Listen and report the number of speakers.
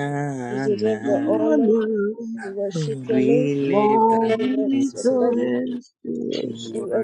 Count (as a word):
three